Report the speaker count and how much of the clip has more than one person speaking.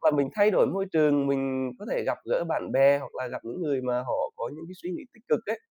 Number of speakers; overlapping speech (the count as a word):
one, no overlap